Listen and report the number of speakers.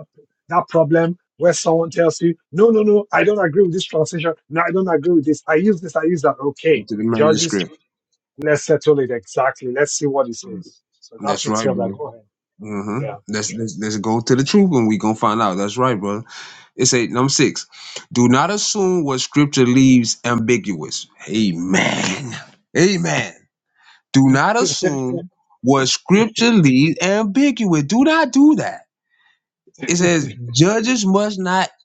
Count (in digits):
2